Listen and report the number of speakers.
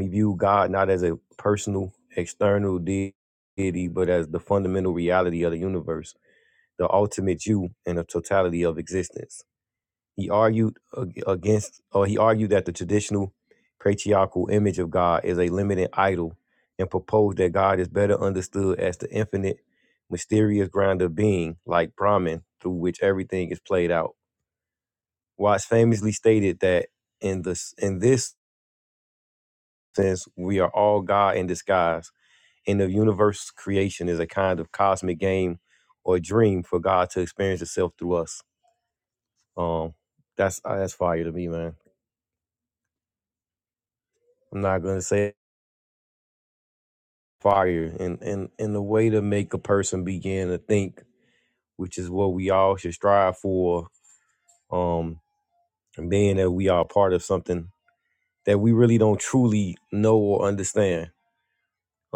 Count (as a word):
one